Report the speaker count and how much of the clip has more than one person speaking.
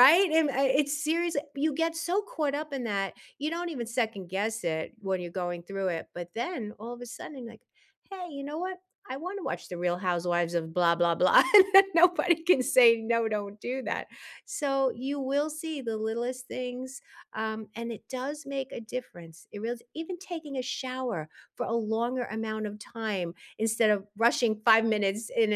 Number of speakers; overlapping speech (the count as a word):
one, no overlap